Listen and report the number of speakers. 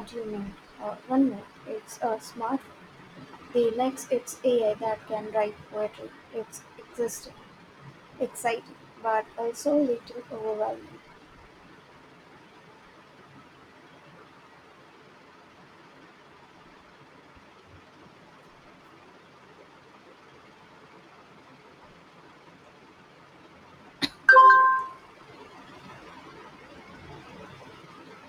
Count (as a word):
one